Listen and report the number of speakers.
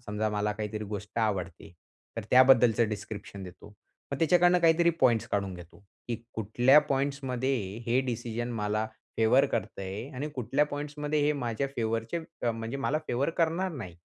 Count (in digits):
1